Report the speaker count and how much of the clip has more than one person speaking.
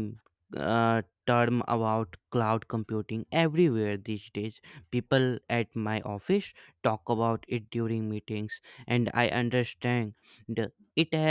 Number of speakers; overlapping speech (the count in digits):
1, no overlap